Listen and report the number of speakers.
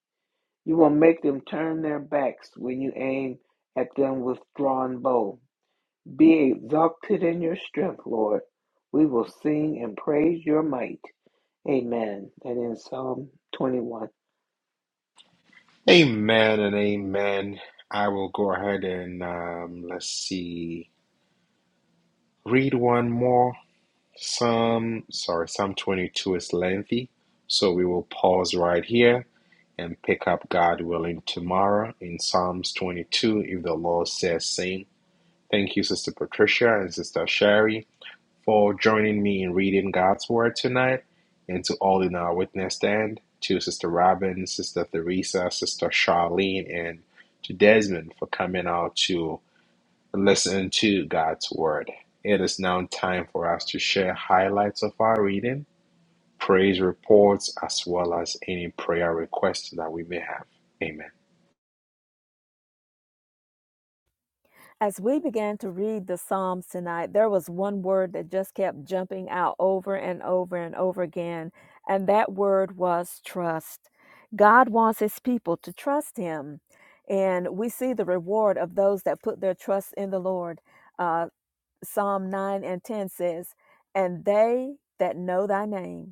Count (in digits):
3